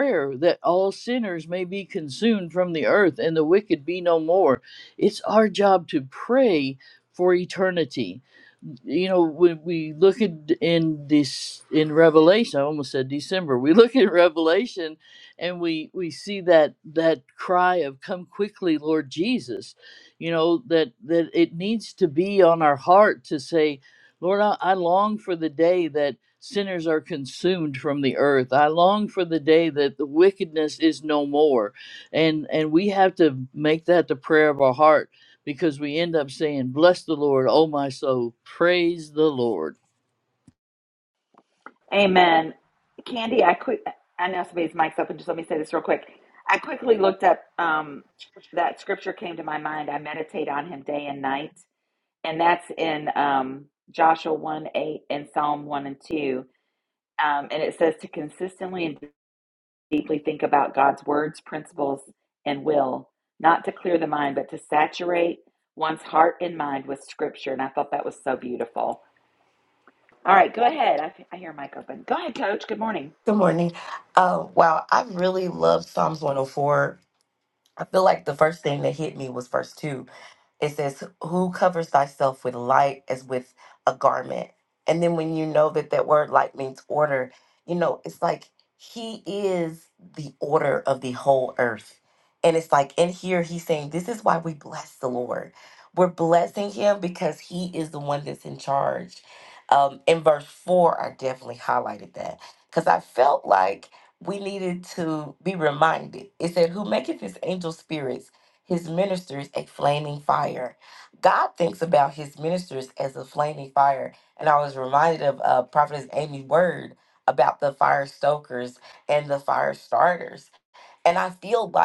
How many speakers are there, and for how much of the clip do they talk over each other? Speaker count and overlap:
3, no overlap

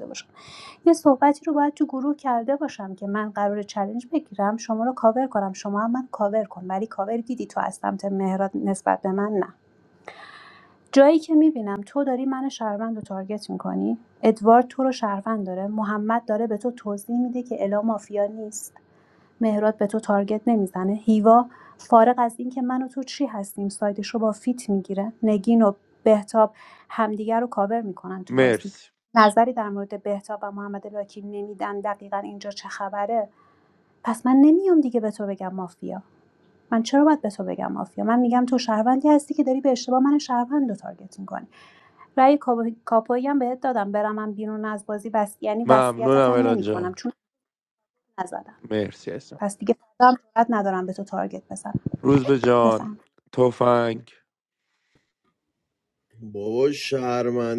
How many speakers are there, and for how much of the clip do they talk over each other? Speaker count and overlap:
3, about 3%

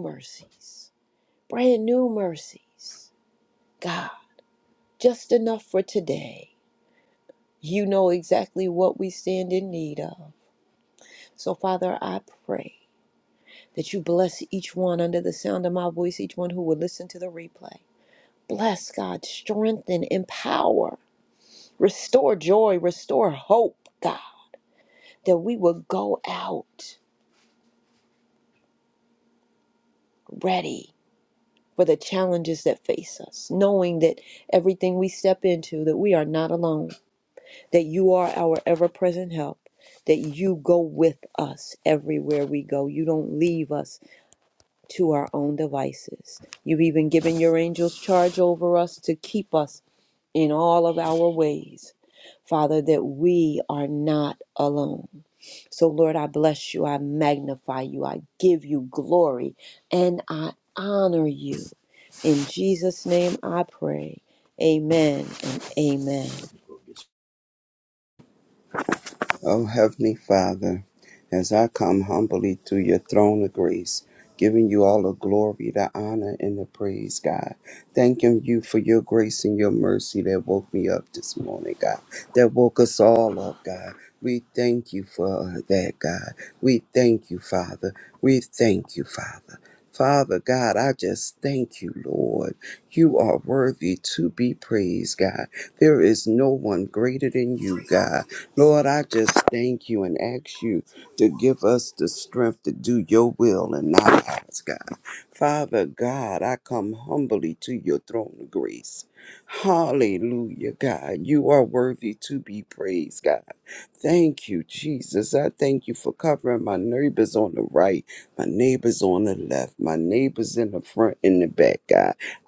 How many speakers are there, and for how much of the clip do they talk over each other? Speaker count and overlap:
2, no overlap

